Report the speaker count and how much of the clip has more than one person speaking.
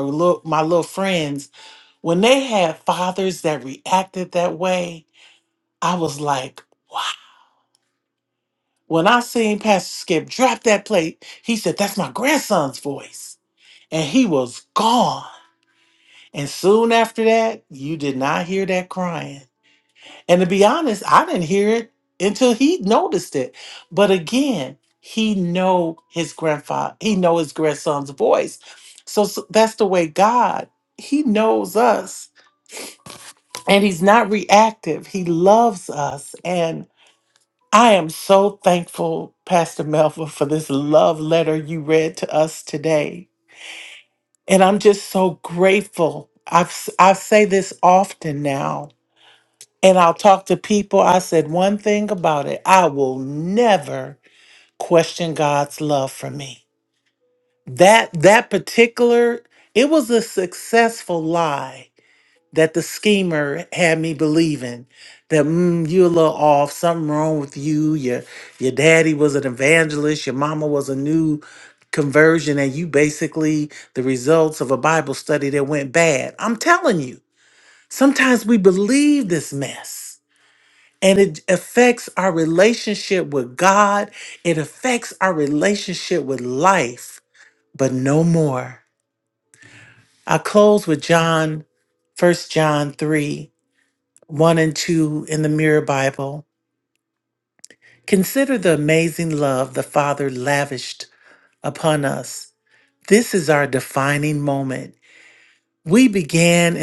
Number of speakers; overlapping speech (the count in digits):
1, no overlap